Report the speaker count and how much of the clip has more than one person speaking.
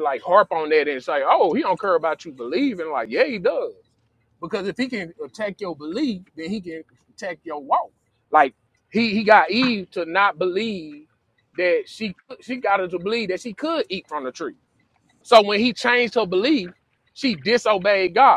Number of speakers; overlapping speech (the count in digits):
1, no overlap